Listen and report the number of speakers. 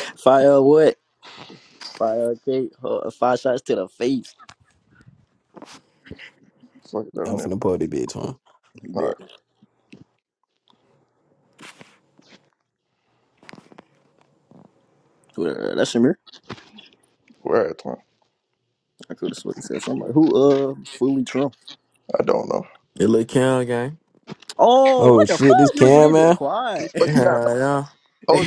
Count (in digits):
4